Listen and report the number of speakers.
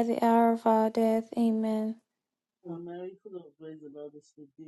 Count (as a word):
two